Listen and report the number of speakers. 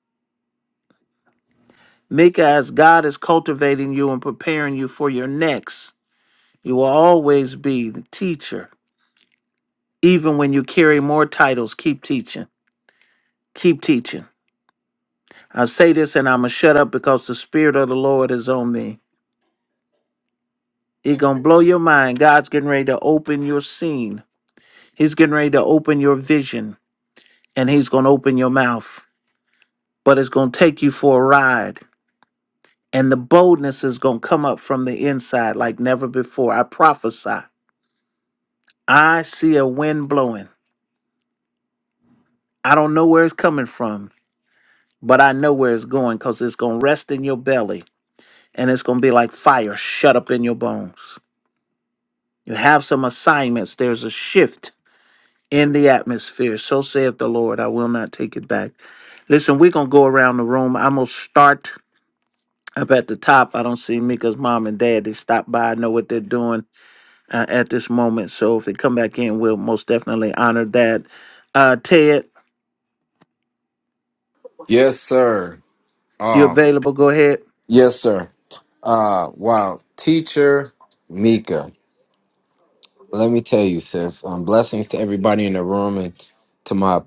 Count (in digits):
2